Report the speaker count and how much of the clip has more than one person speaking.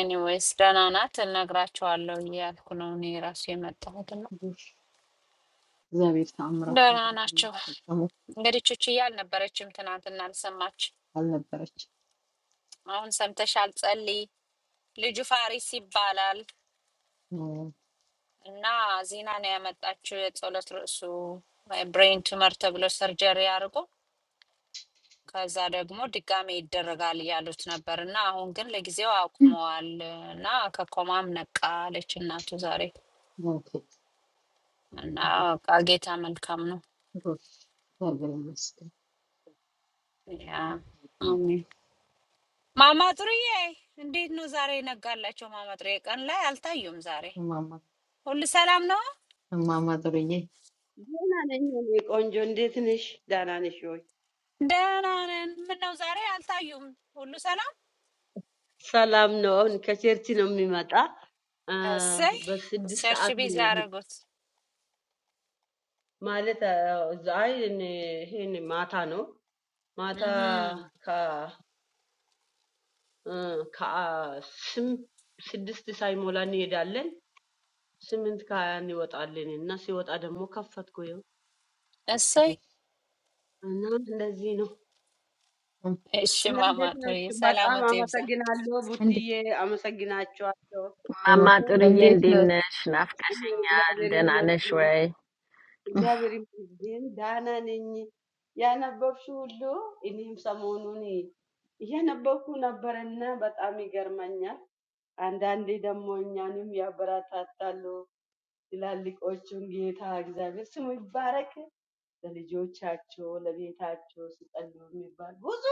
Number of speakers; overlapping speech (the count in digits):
4, about 5%